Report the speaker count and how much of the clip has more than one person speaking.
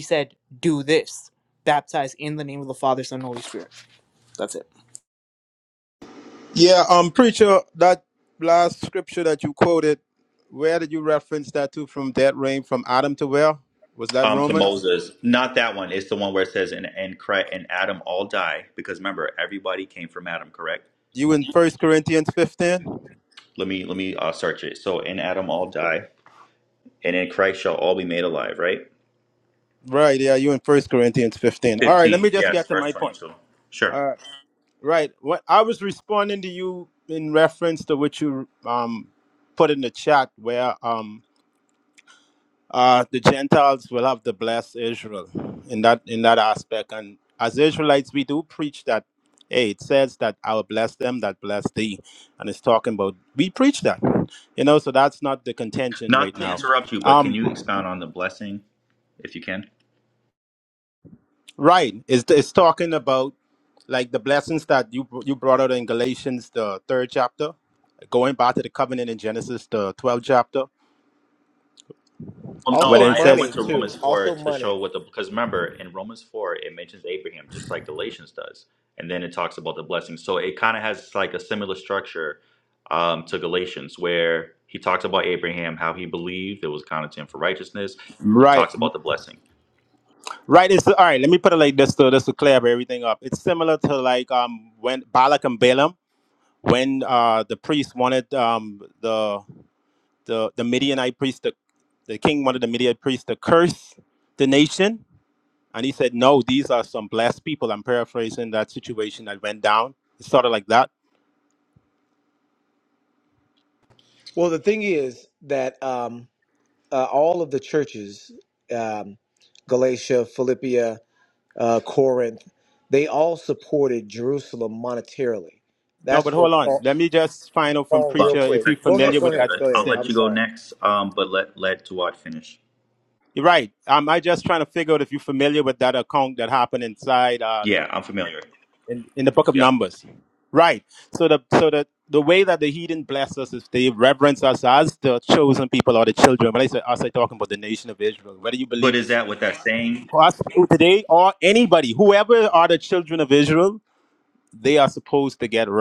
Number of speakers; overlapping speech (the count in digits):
4, about 6%